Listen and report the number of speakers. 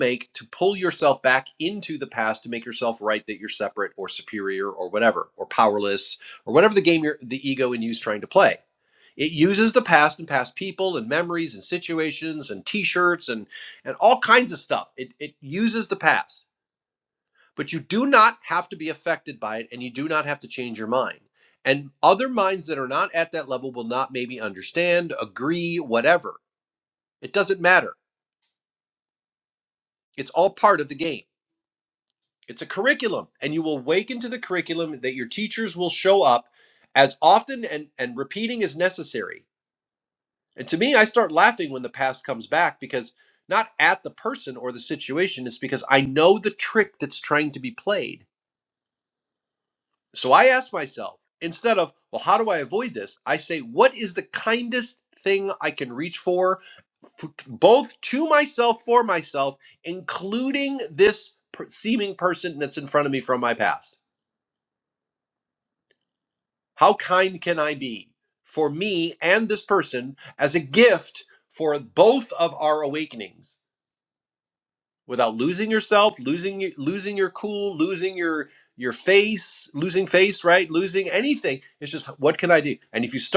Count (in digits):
1